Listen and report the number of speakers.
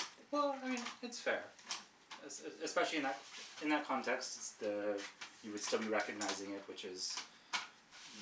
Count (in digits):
1